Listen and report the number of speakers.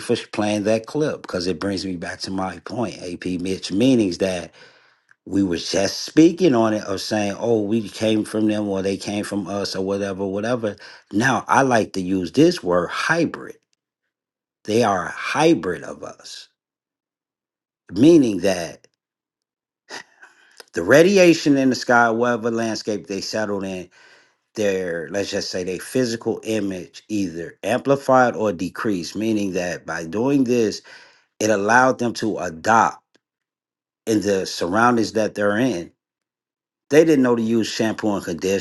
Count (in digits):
1